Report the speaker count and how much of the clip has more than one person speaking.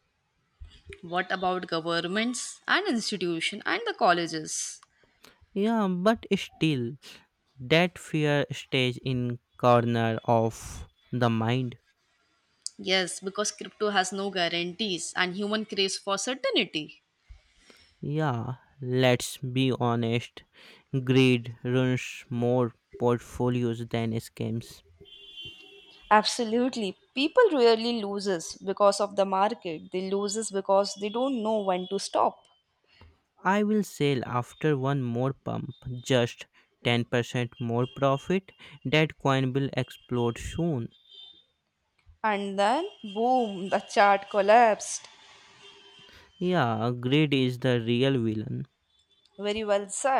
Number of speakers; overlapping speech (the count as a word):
two, no overlap